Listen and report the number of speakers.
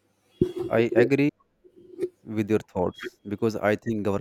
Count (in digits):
1